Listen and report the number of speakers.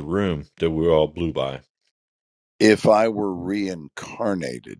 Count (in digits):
2